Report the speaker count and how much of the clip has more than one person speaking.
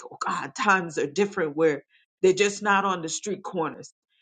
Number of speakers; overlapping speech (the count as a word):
one, no overlap